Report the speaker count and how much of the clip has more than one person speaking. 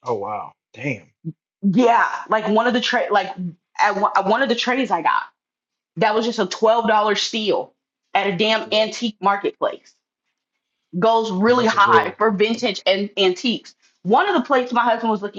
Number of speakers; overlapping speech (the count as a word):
two, about 6%